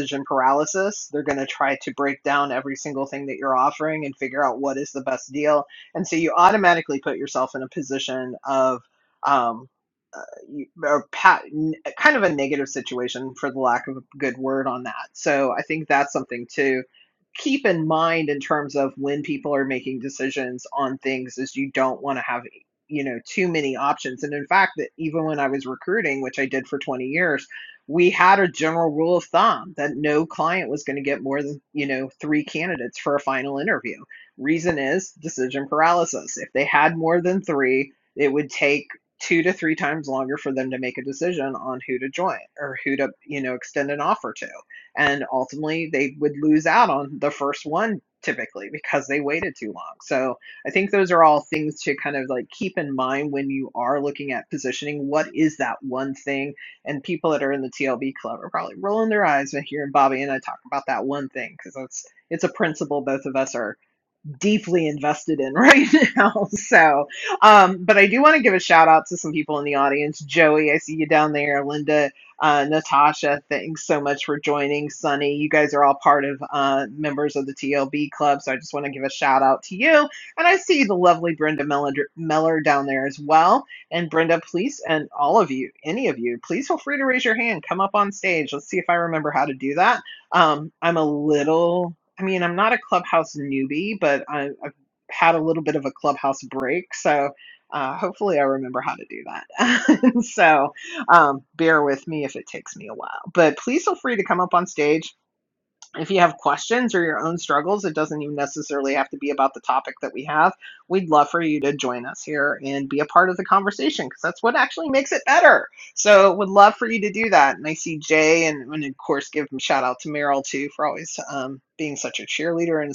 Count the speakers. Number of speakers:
1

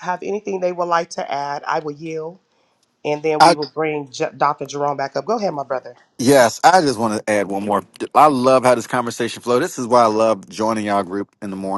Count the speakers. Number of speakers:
2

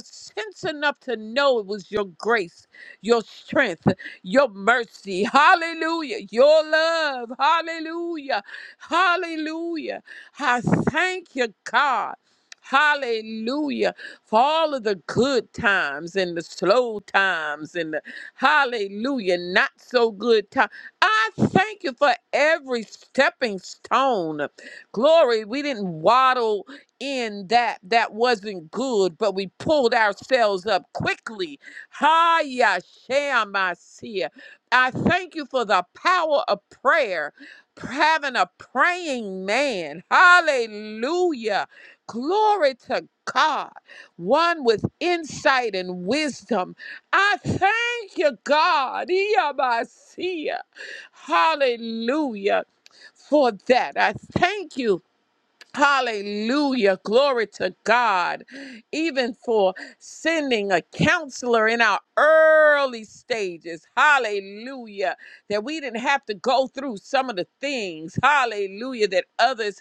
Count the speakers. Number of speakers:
1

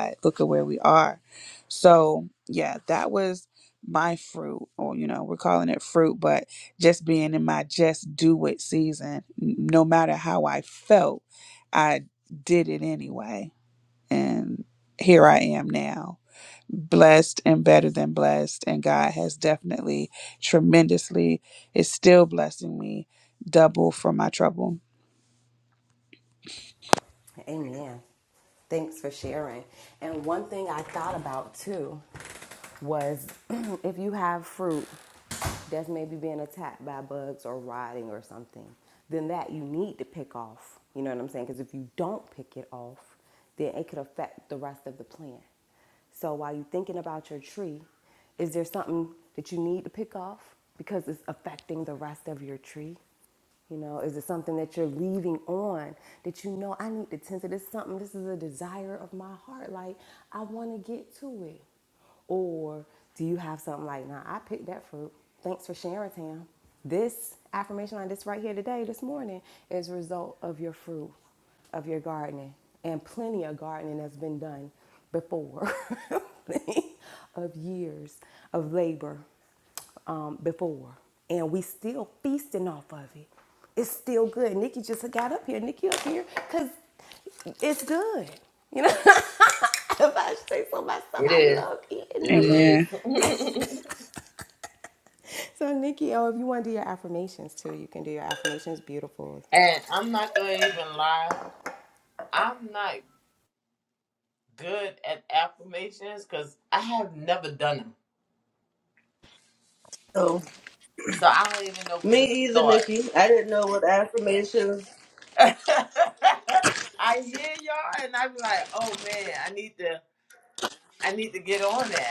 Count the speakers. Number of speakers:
4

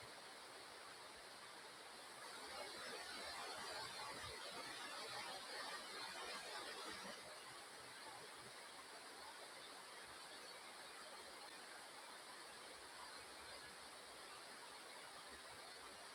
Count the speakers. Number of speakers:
0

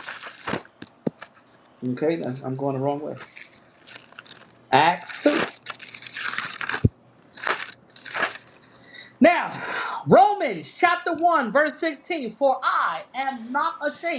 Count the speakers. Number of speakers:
1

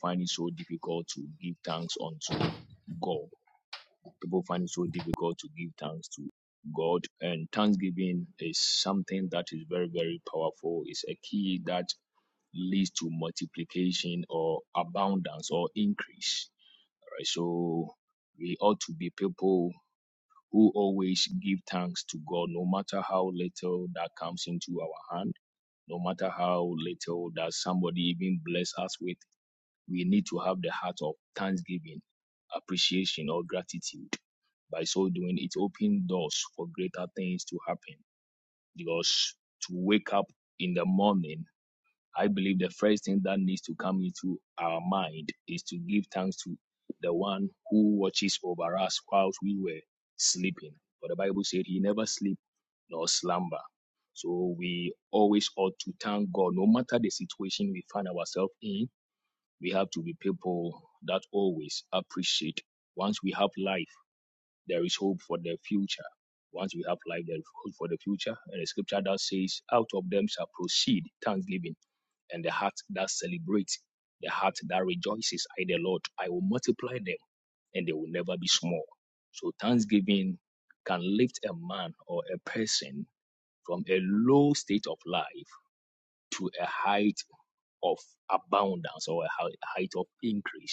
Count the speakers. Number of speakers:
1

